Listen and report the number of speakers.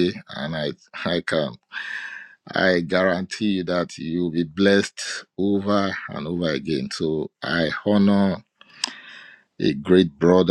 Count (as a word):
one